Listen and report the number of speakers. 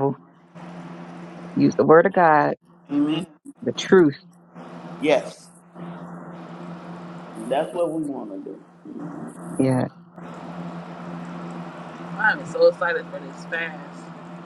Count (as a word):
three